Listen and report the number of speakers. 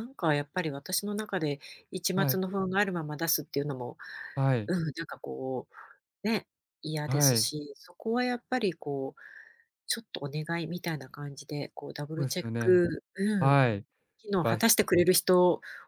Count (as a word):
two